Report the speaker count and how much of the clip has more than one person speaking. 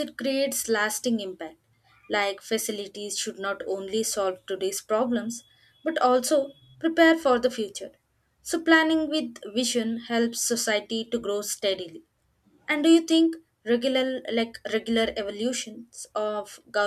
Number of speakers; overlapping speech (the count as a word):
one, no overlap